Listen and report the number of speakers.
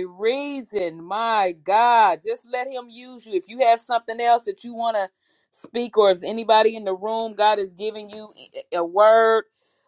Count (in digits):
1